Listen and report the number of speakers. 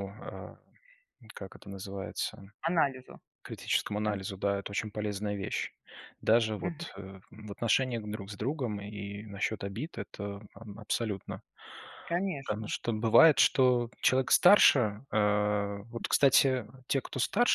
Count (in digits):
2